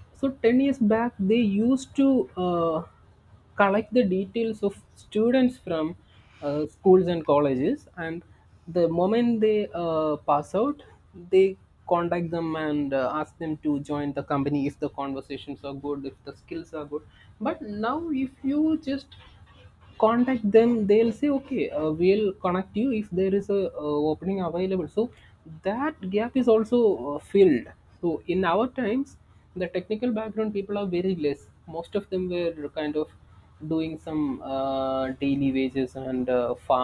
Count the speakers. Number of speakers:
one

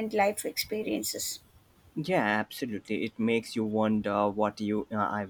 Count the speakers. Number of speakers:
two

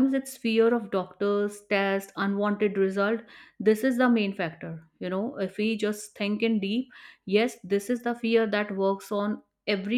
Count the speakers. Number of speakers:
one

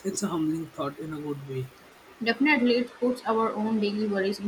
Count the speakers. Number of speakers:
two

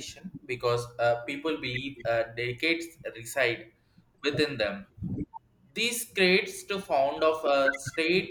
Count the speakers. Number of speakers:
one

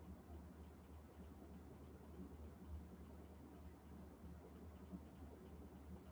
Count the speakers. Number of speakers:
zero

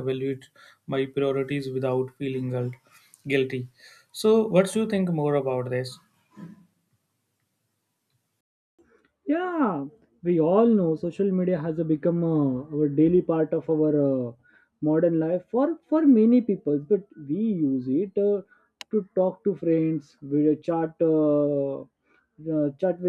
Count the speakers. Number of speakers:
two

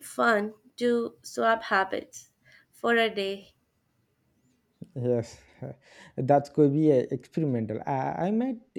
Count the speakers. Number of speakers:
two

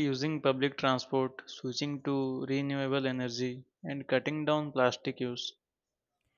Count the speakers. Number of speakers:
one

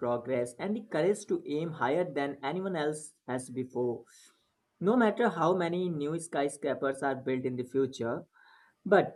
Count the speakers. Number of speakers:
one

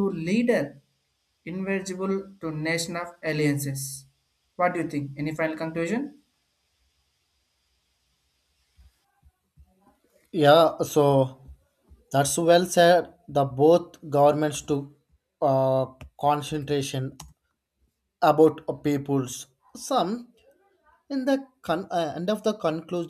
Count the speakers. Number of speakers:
two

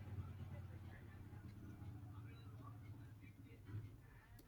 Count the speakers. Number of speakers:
zero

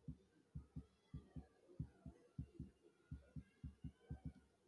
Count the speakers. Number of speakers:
zero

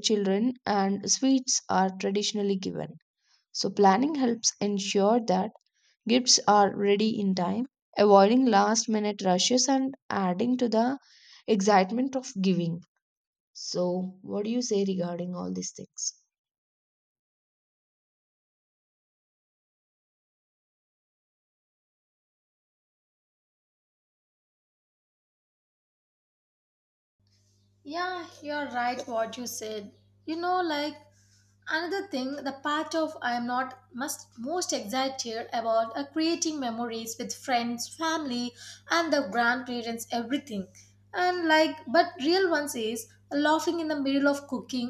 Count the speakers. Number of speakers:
two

